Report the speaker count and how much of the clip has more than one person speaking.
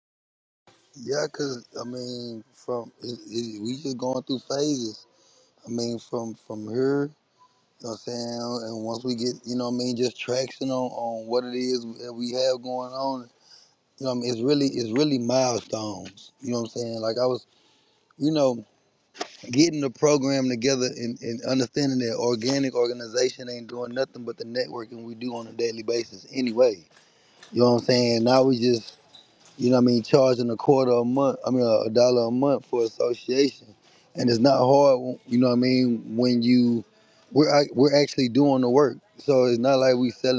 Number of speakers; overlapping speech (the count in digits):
1, no overlap